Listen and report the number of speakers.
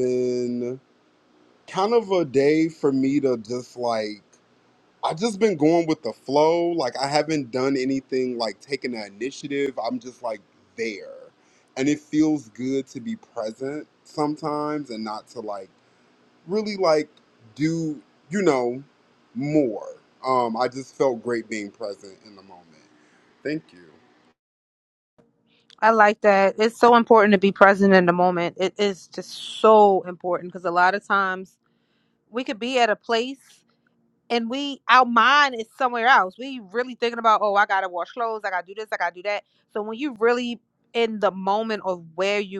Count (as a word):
two